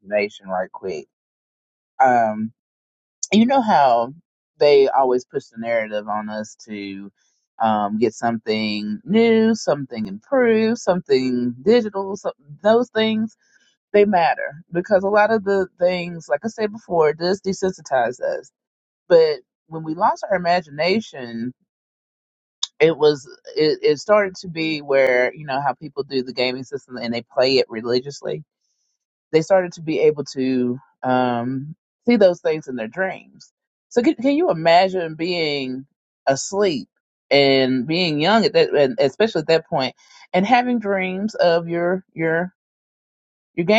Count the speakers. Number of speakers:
1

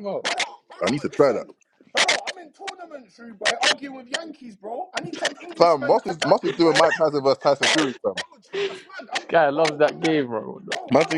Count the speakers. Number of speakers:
3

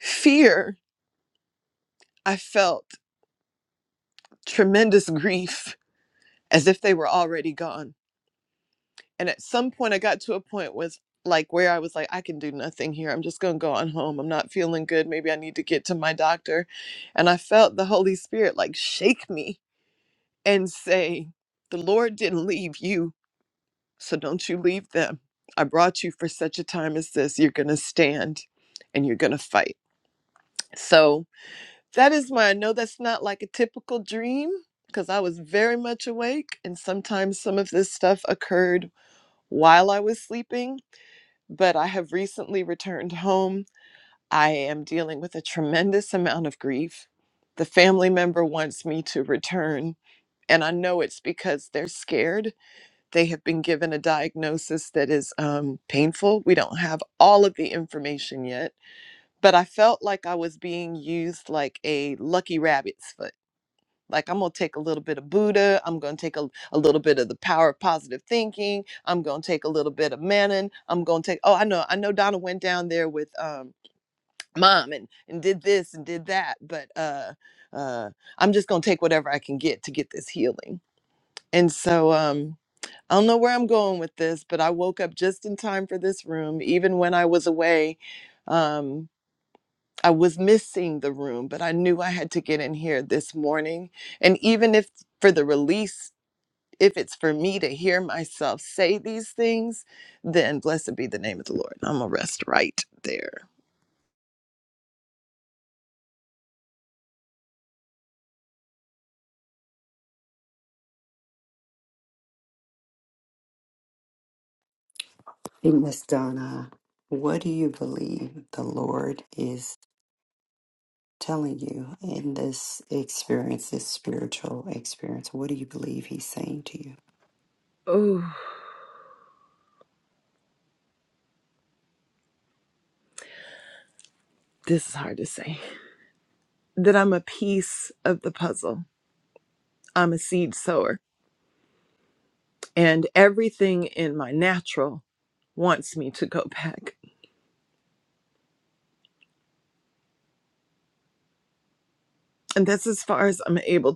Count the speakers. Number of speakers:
2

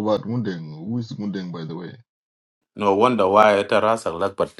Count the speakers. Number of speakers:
2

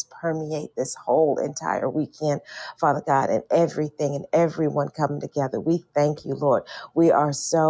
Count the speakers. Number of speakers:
1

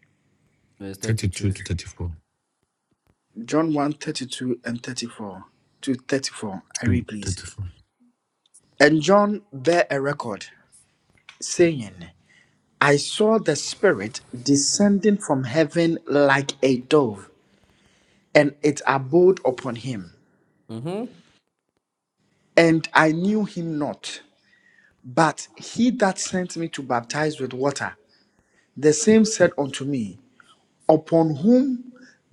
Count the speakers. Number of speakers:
3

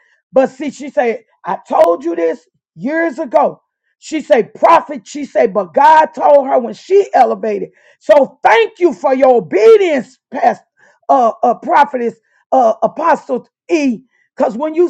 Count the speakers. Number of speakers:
1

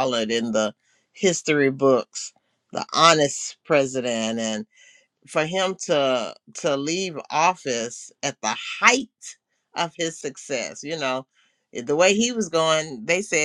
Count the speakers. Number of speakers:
1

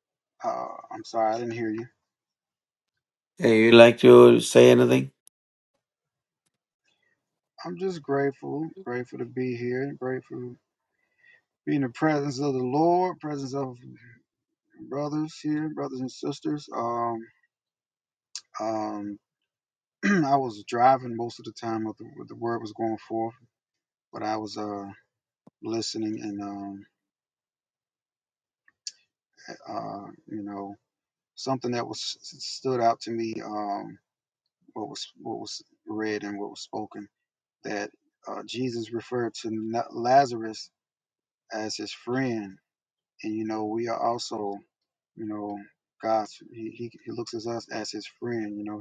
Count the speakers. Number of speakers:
2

